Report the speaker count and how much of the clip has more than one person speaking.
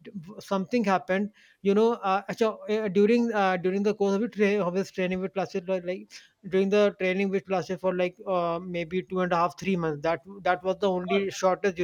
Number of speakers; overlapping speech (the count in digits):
1, no overlap